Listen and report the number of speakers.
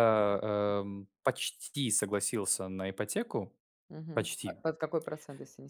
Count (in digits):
2